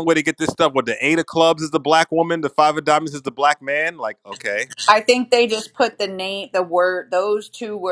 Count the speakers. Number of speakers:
2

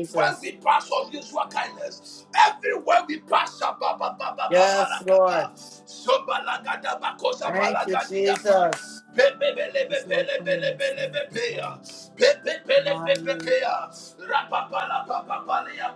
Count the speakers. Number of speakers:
2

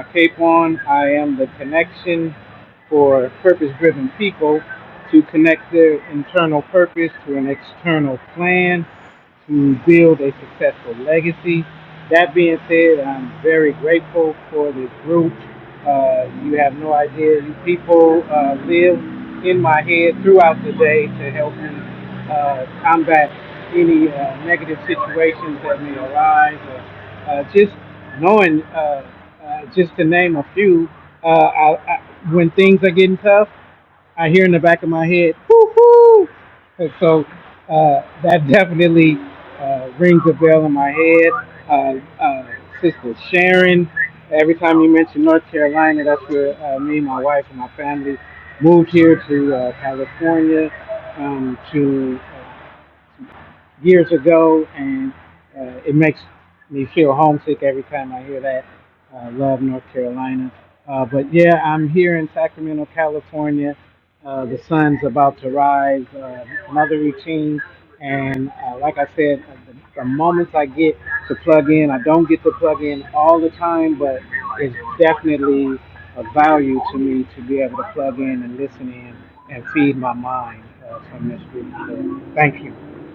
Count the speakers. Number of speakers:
1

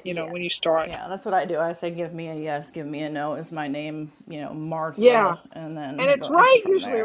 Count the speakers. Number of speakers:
2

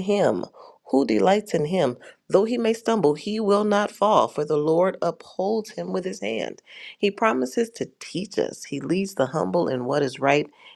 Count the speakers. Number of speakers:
1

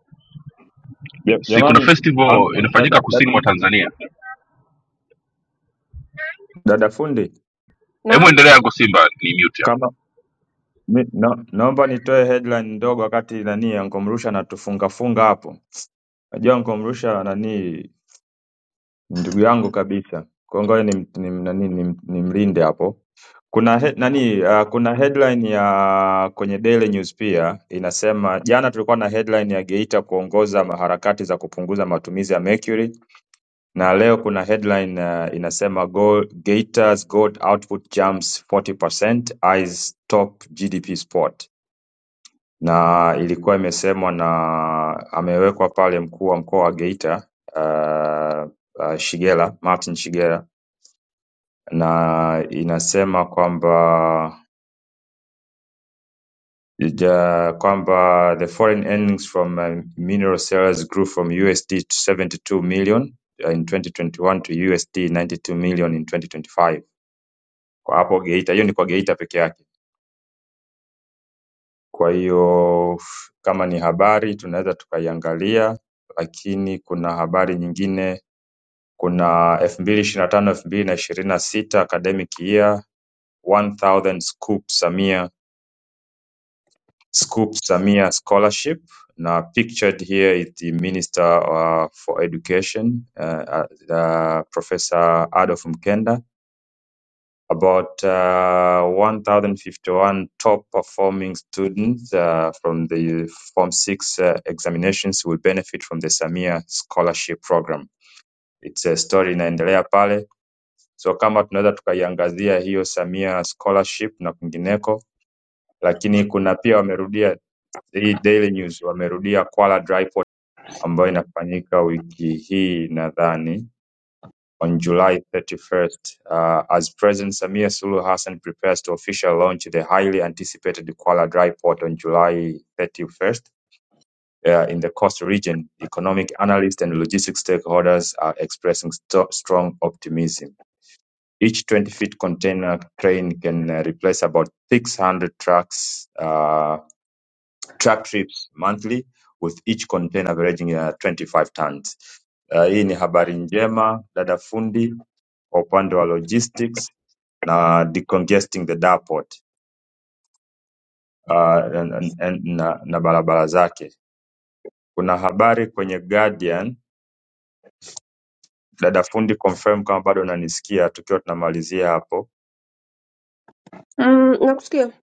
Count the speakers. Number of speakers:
3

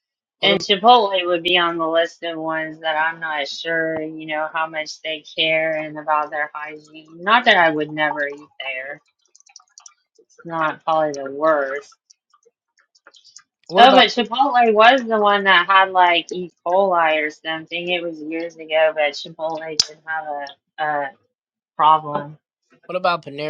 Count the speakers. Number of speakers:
2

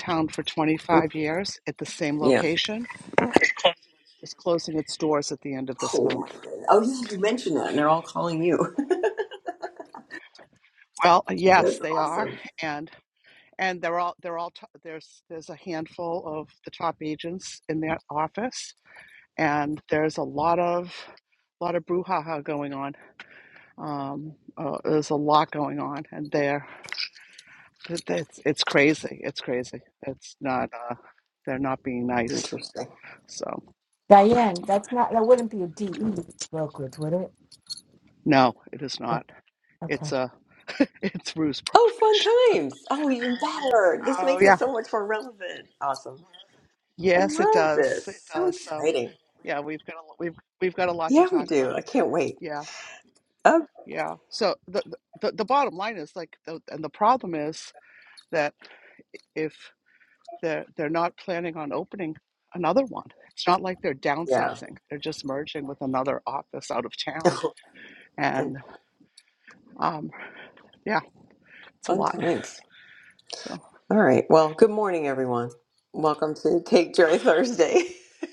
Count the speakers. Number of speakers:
3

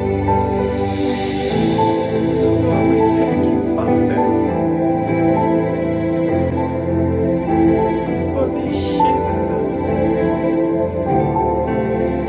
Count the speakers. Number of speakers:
1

